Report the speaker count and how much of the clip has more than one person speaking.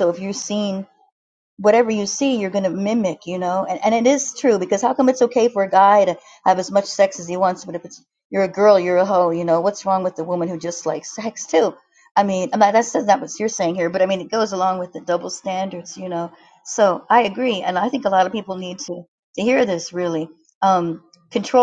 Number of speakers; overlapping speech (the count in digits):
1, no overlap